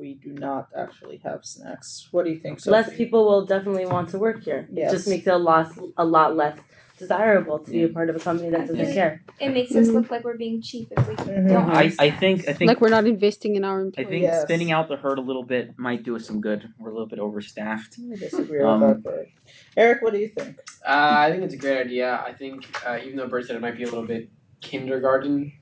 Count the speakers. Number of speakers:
six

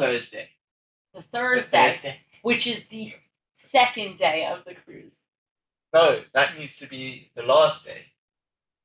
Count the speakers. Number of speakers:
two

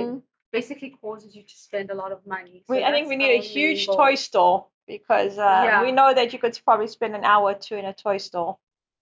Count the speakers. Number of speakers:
two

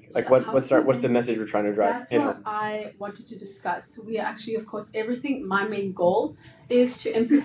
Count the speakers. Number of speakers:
two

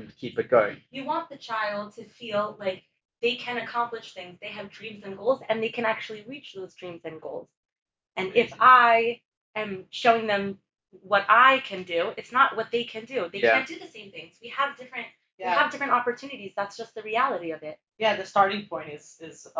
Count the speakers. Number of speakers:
three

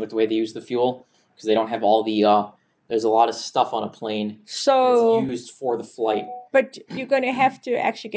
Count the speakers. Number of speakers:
two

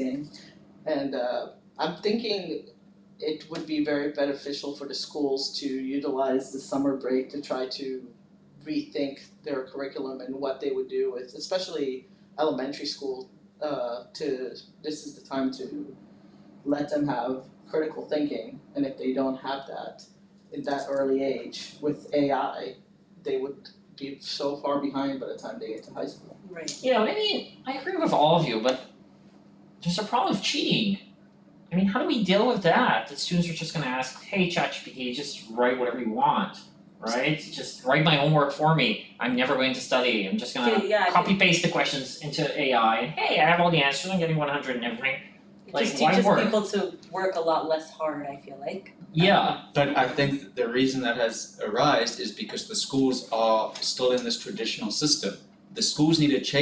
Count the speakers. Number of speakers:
four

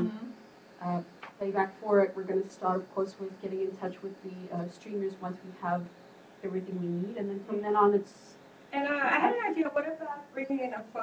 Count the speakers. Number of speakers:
two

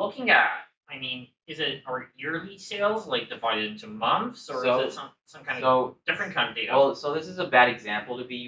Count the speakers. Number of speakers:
two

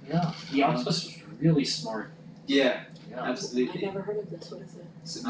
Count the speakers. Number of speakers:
three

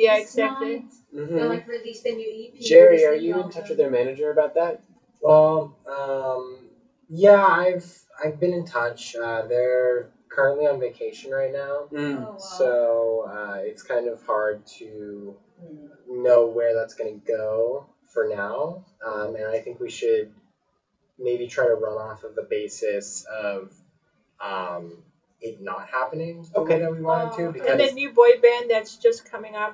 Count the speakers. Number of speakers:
four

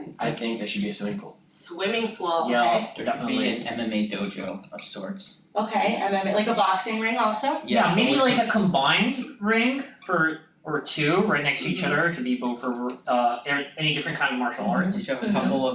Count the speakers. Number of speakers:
four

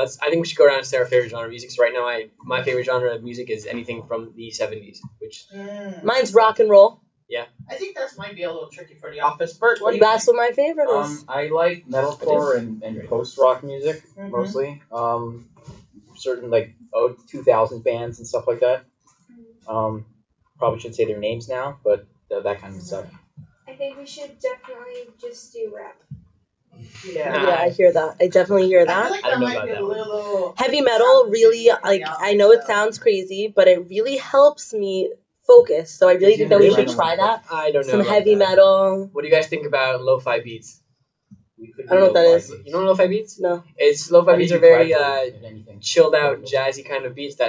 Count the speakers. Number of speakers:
five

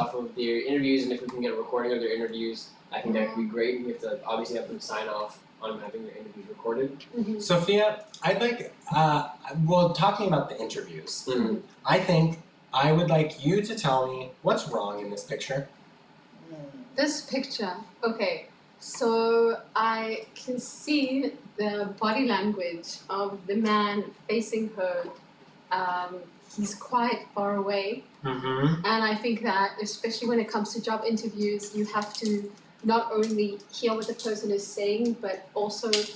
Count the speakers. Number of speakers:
three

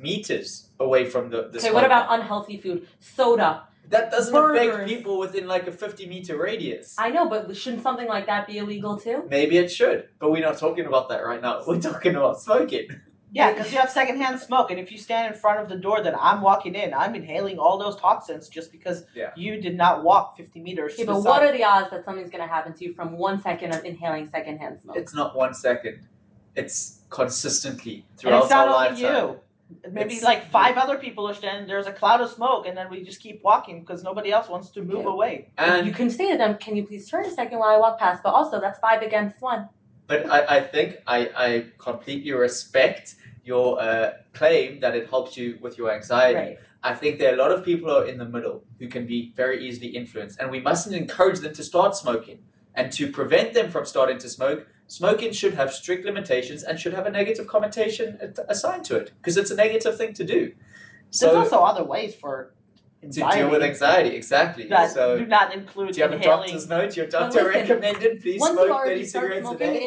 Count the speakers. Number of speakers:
three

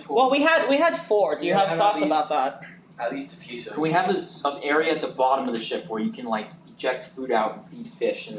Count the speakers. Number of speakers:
three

